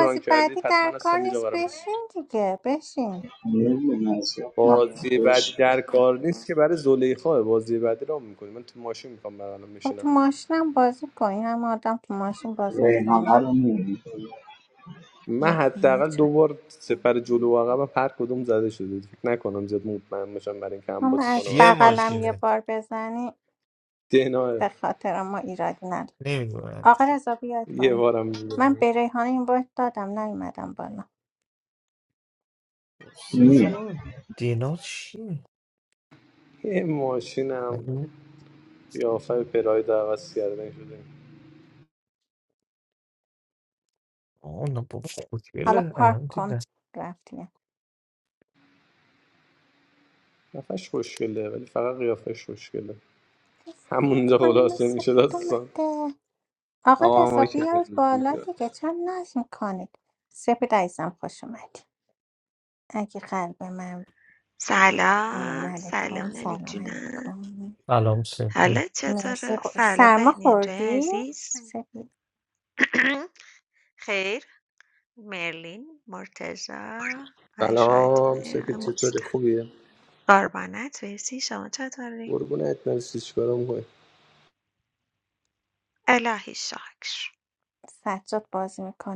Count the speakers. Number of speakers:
five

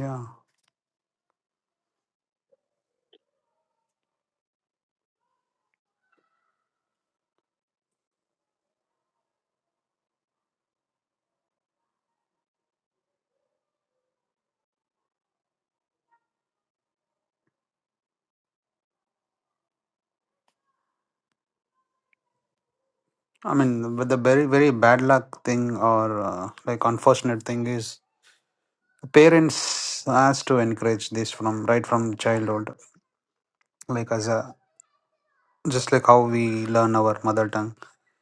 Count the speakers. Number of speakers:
one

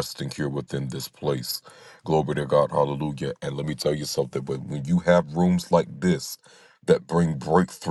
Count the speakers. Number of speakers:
one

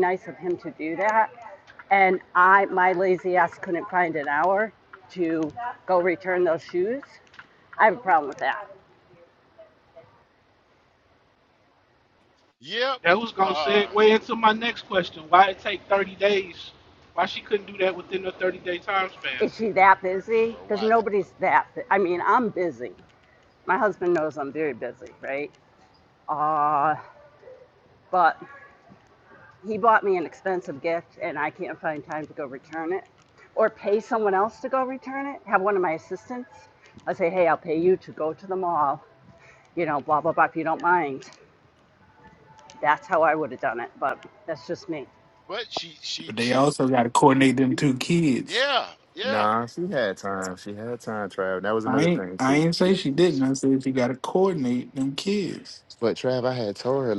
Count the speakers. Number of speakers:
five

